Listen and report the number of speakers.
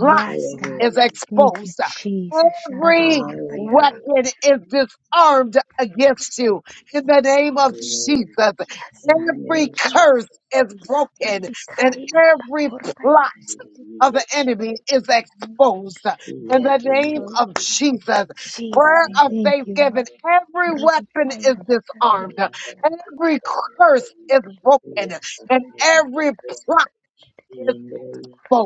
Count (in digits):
3